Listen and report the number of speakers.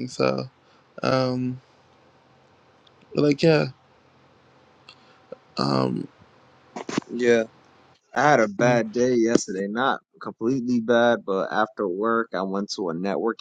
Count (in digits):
2